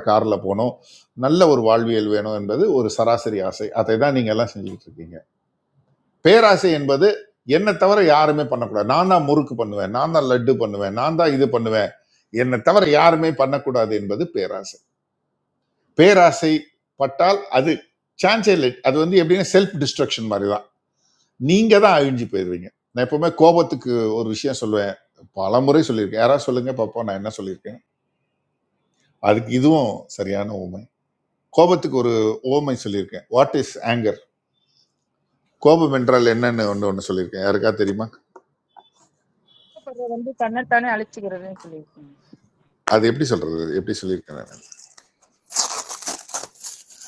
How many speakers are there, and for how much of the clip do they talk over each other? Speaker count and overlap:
two, no overlap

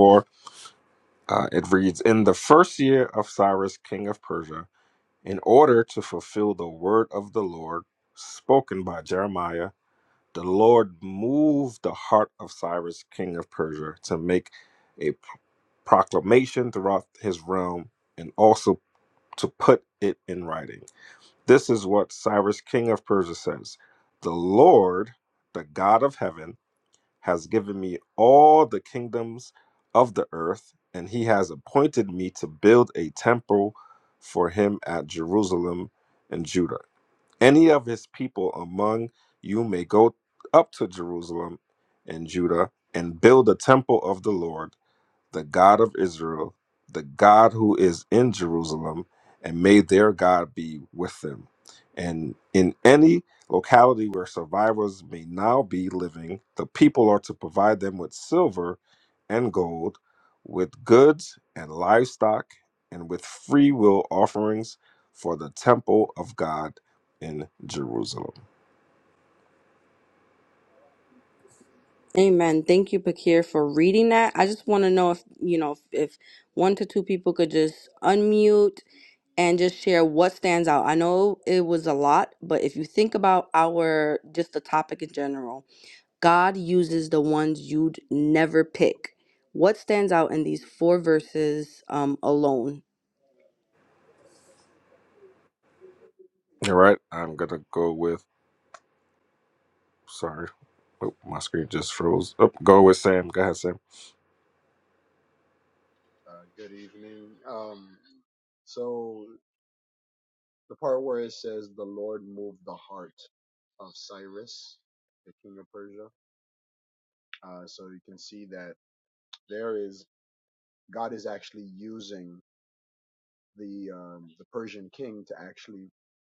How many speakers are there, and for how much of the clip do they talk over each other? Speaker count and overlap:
three, no overlap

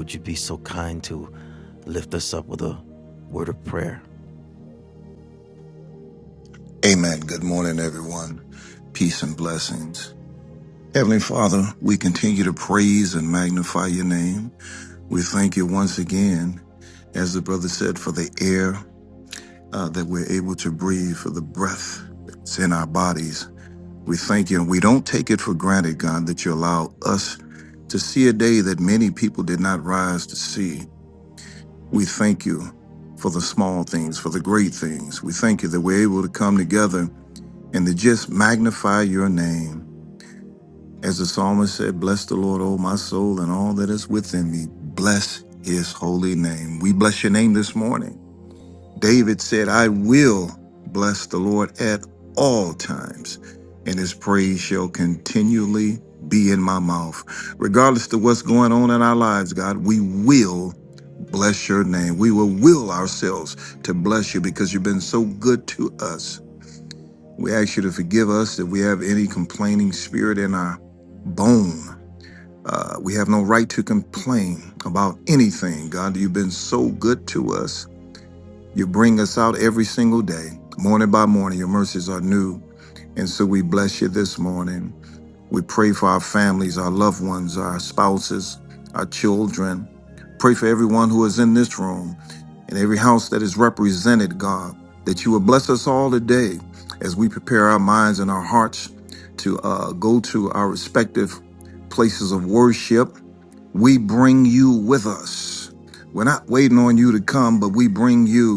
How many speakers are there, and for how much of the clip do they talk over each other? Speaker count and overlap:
two, no overlap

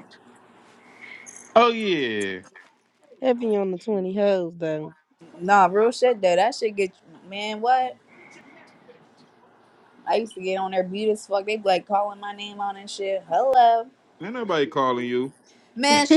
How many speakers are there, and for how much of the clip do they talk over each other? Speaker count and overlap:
three, no overlap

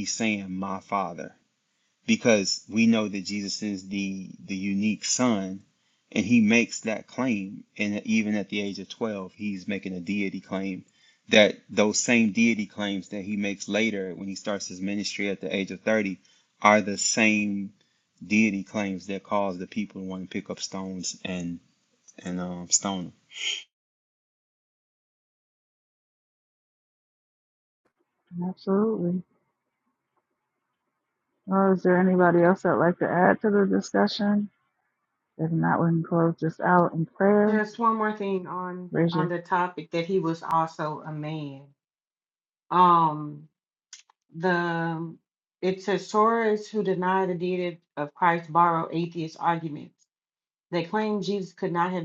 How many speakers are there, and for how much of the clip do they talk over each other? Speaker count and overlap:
three, about 1%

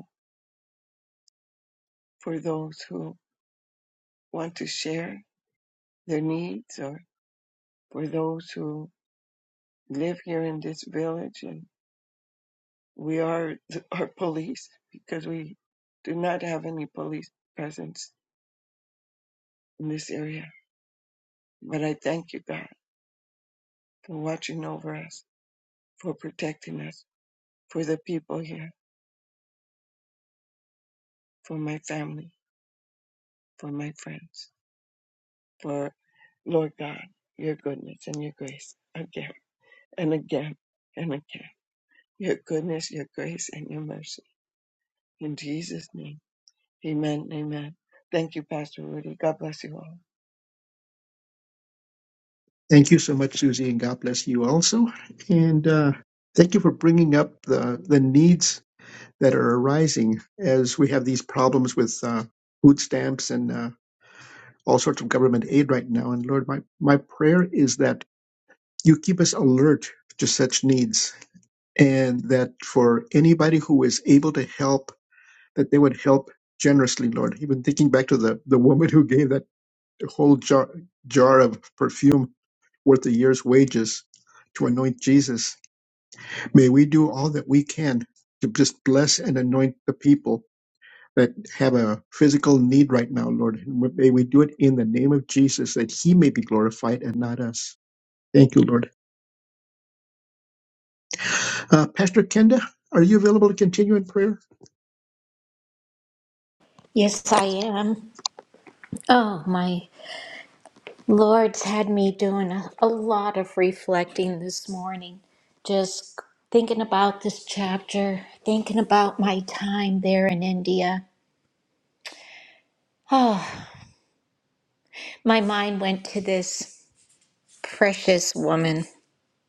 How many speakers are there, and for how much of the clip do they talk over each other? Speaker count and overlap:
three, no overlap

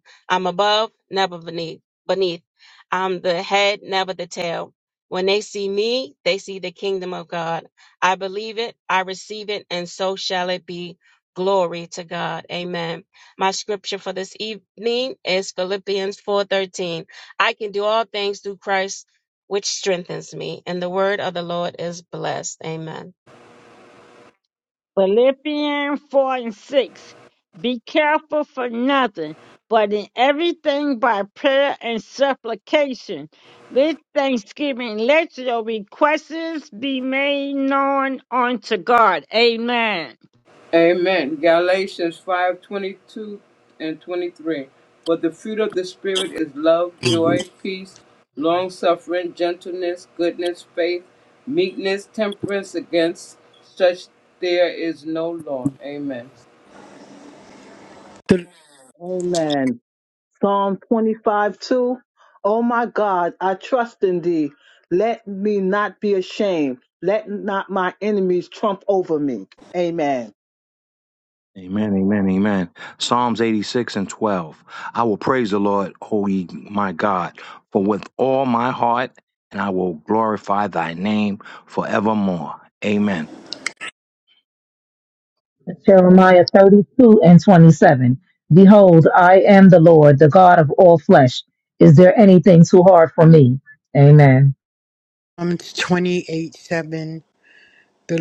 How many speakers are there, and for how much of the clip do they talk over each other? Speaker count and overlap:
seven, no overlap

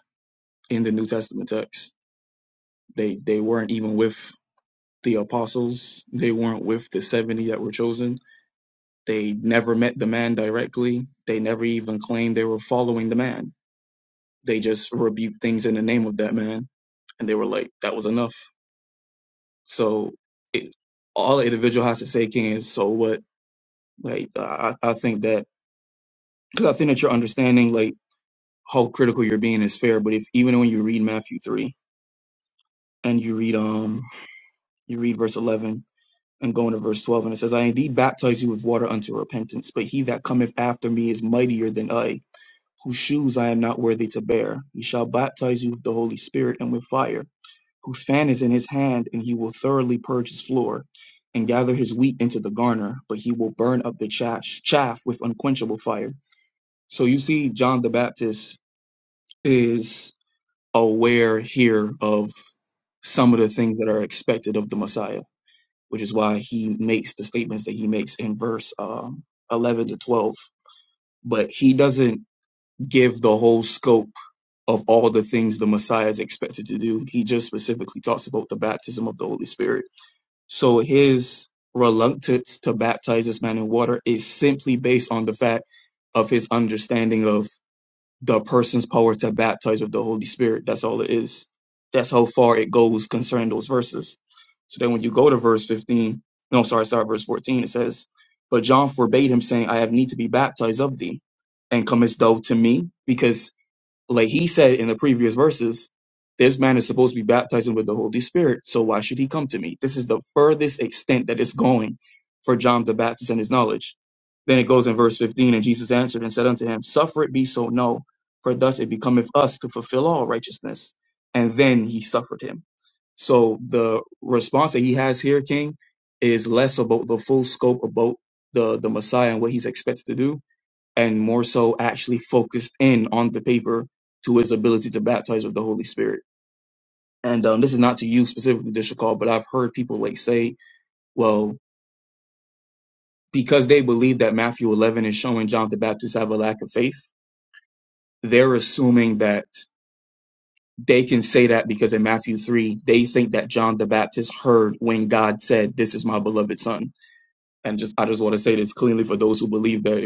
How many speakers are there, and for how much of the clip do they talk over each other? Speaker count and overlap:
one, no overlap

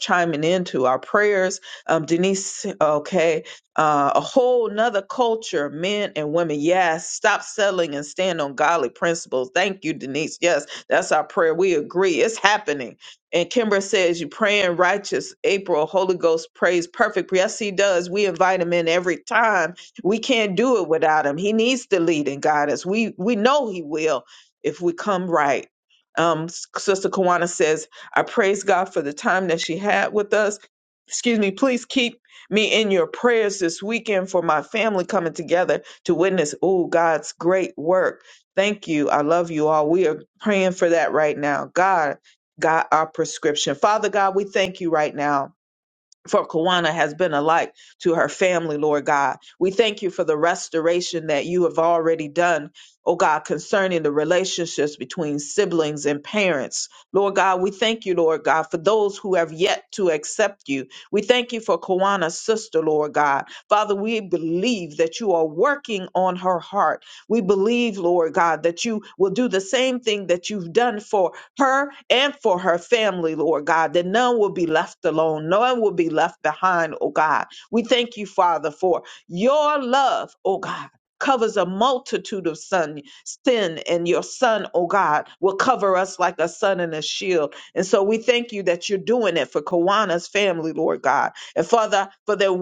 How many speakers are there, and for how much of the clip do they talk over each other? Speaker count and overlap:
one, no overlap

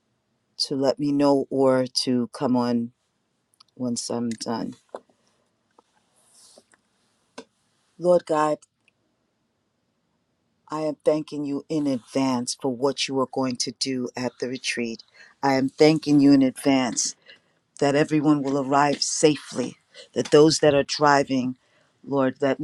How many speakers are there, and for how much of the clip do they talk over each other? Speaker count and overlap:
one, no overlap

